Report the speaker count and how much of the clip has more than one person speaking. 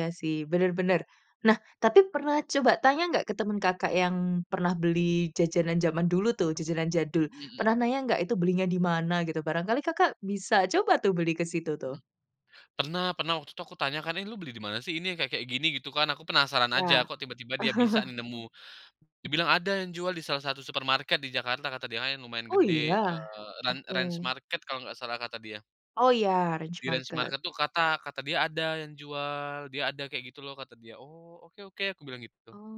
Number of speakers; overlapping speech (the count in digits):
2, about 7%